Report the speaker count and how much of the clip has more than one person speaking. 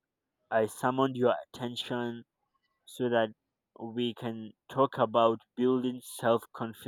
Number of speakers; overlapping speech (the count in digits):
1, no overlap